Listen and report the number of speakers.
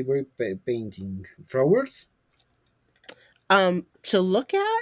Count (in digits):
2